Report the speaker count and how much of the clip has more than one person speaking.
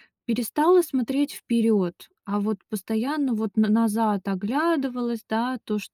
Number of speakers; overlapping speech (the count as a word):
one, no overlap